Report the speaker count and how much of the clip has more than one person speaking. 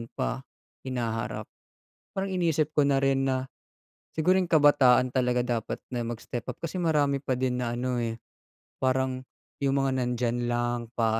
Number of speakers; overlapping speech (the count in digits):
1, no overlap